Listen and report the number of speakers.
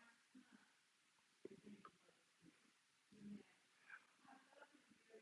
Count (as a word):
zero